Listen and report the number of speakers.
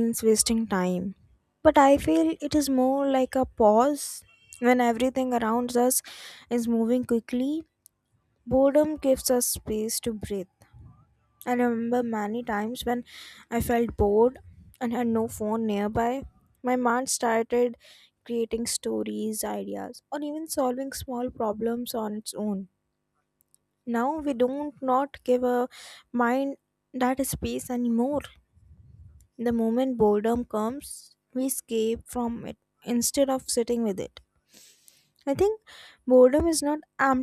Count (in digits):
1